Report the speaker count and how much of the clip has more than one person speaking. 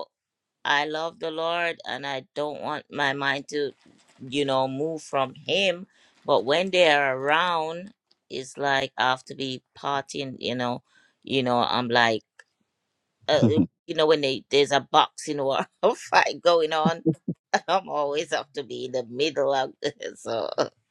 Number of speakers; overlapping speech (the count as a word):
one, no overlap